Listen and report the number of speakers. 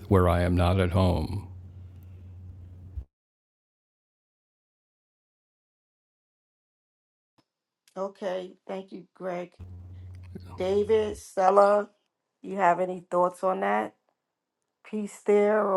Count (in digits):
2